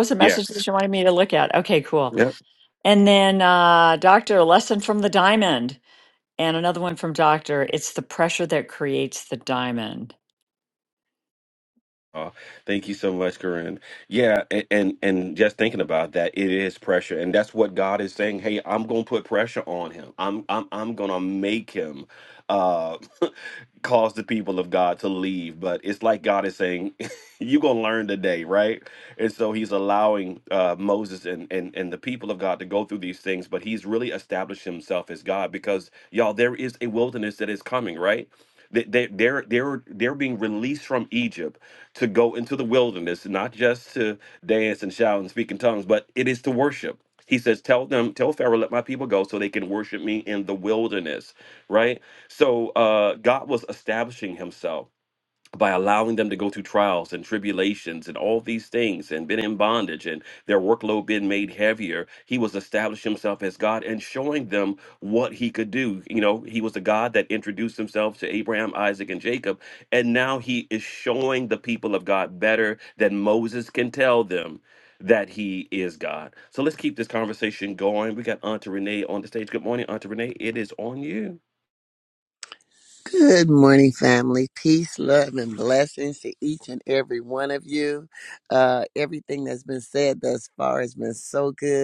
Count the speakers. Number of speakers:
three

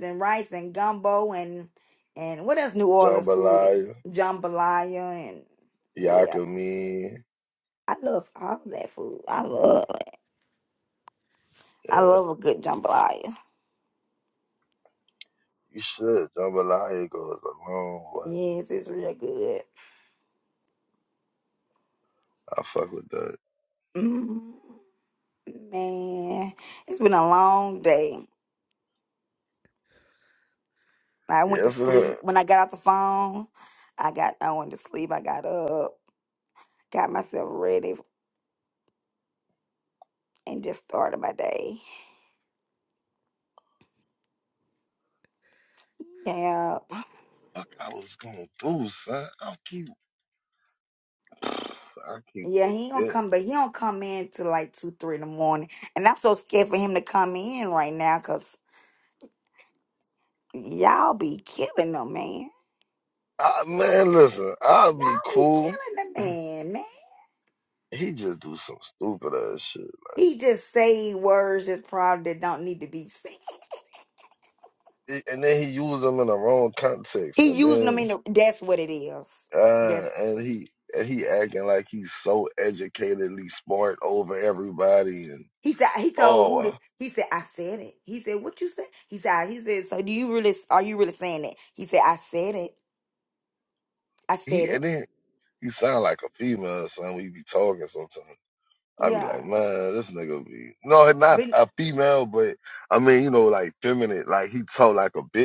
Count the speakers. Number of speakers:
two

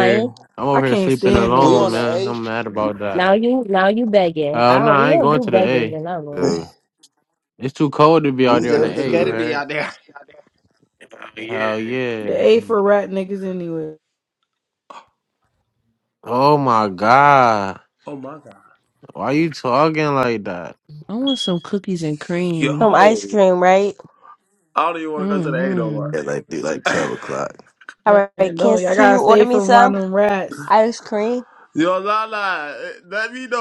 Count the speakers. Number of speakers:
six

